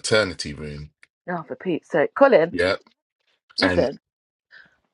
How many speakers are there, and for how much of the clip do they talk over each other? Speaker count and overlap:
2, about 6%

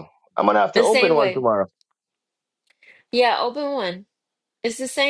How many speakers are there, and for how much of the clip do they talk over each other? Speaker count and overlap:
2, about 13%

